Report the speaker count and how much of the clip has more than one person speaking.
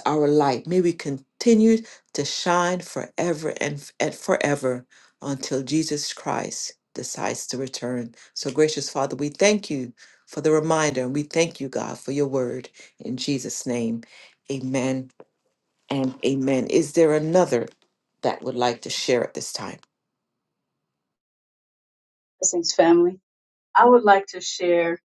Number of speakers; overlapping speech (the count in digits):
2, no overlap